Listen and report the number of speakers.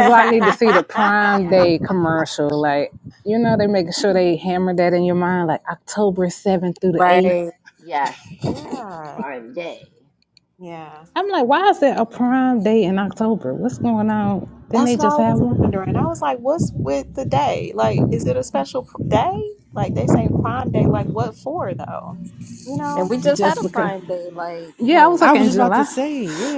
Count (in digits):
5